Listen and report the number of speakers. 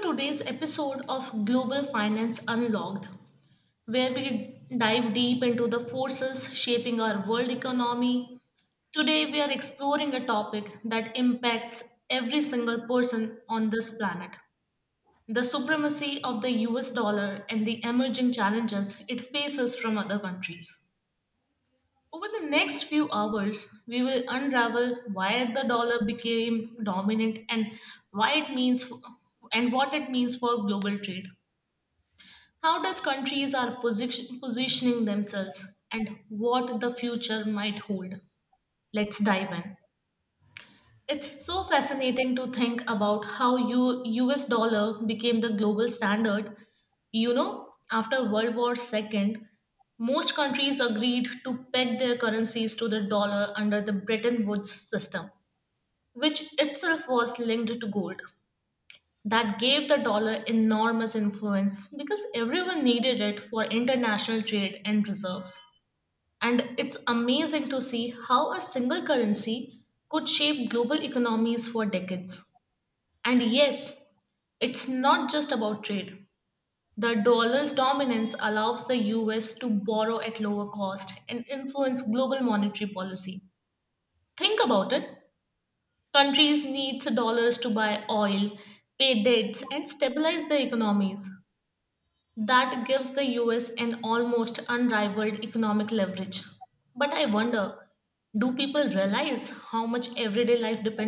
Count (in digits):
1